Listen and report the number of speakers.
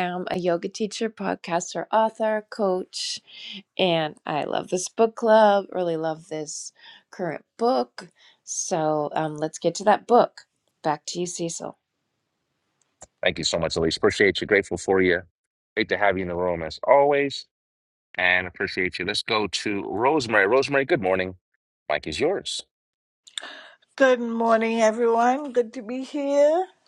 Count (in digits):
3